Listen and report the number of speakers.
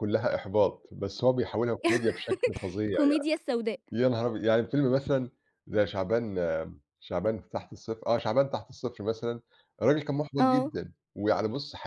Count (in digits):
2